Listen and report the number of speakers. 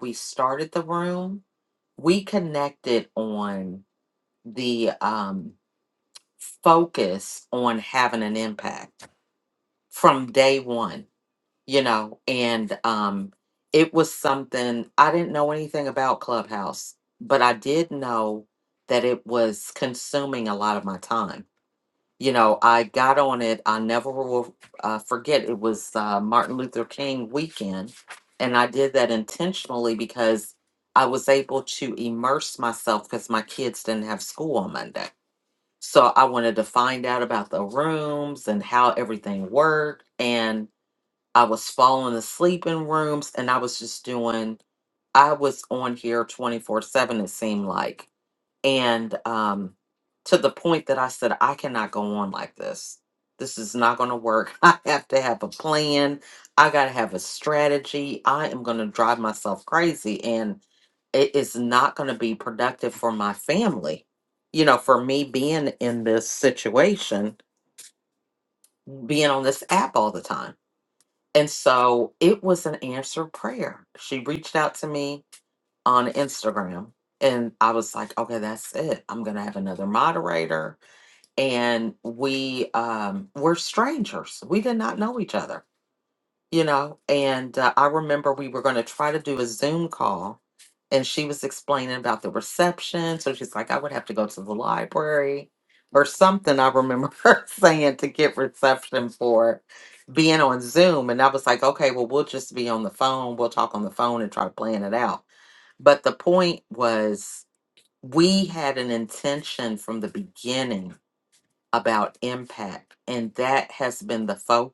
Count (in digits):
1